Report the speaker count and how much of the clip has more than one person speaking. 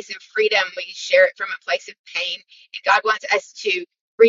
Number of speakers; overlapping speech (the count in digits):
1, no overlap